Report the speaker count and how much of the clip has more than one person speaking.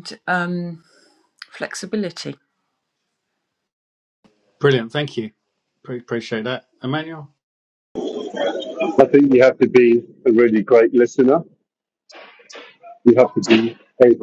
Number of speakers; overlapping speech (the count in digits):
3, no overlap